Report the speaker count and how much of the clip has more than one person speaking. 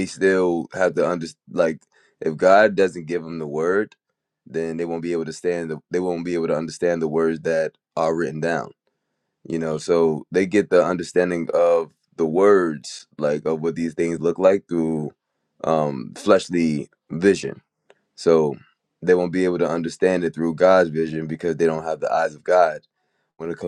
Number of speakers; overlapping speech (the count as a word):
one, no overlap